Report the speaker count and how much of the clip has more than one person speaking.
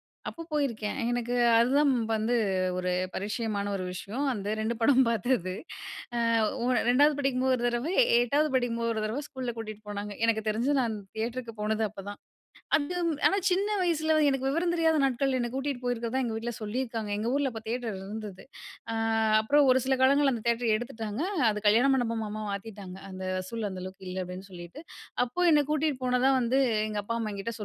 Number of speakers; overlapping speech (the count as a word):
one, no overlap